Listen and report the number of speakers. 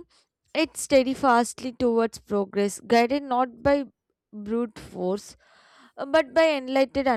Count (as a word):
one